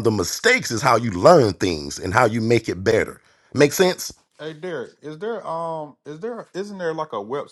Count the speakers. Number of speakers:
two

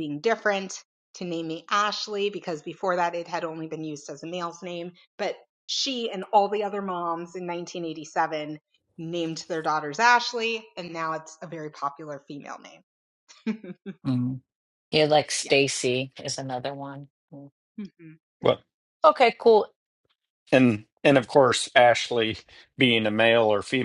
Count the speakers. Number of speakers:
three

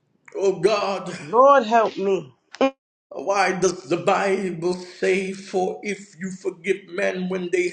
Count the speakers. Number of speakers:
two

